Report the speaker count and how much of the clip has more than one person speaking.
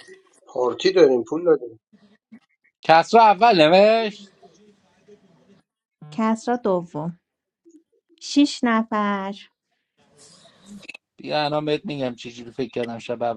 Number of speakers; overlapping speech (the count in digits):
3, no overlap